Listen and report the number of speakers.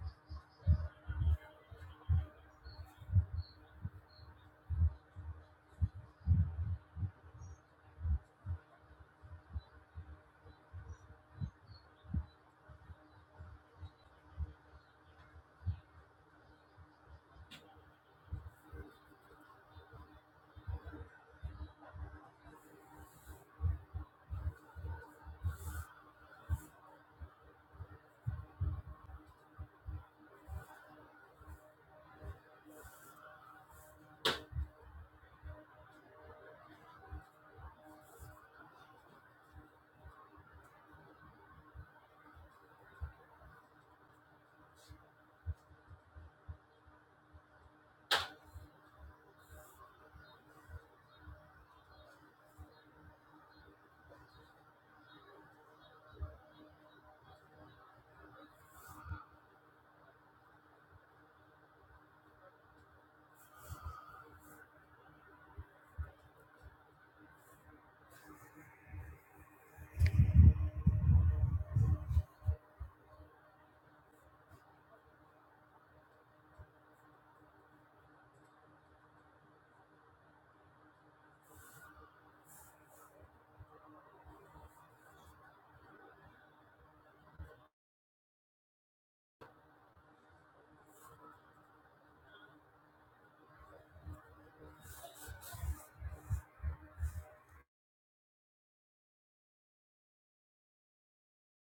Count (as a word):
zero